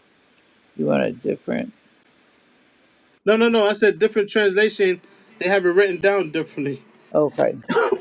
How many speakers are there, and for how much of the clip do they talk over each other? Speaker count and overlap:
two, no overlap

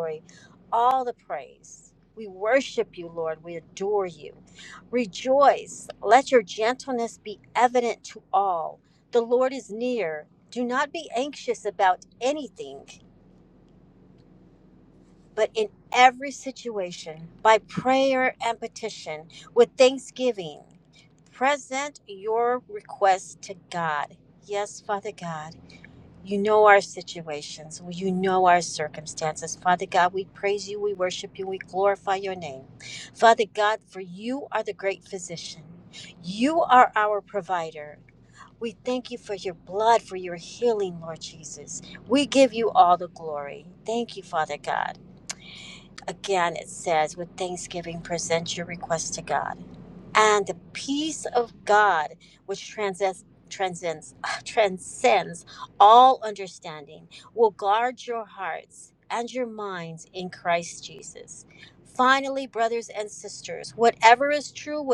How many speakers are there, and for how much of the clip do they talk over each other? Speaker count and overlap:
one, no overlap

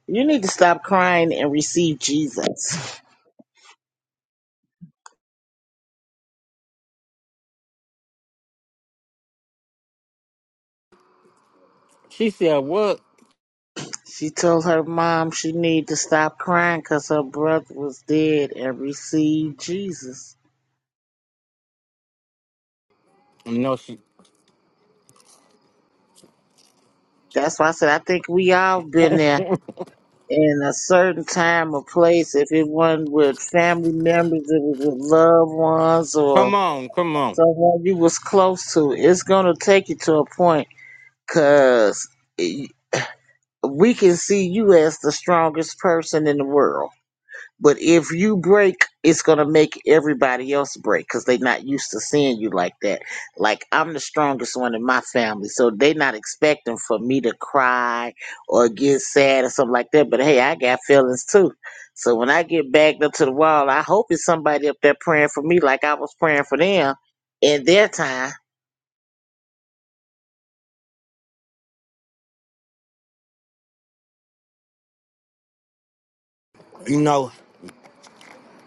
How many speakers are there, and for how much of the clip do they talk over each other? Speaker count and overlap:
two, under 1%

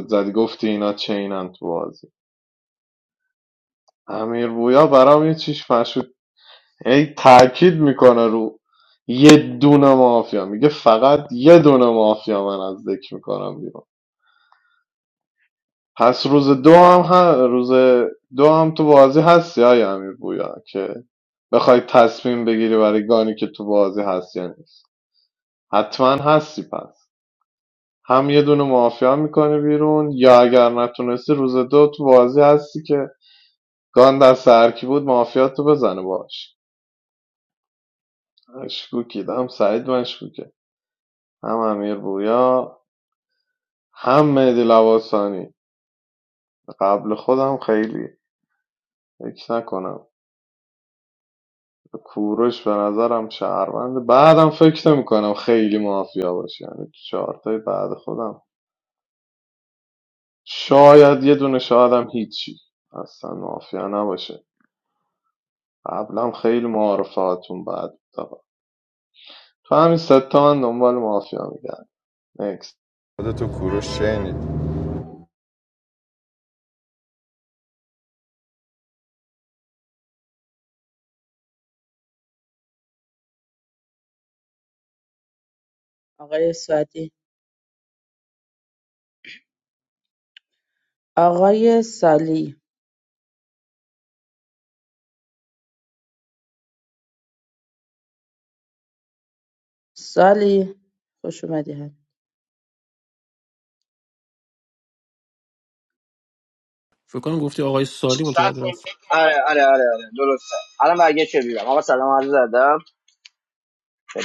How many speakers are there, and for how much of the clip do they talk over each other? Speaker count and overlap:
five, no overlap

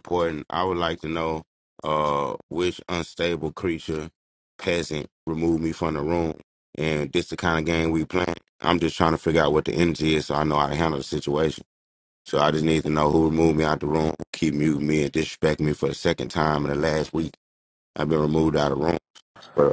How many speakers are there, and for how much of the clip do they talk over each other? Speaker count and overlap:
one, no overlap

